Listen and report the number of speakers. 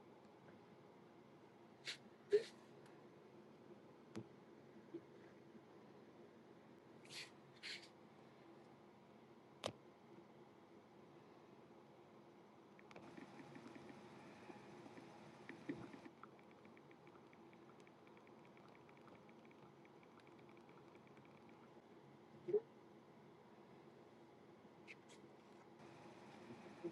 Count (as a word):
zero